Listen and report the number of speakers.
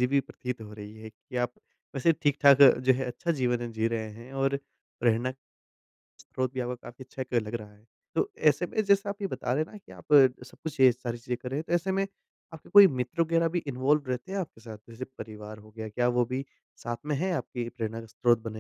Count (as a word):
one